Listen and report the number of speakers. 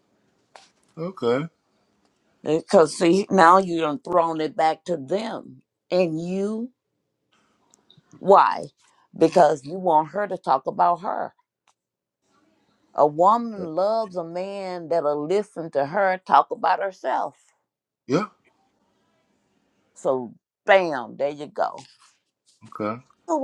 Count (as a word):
two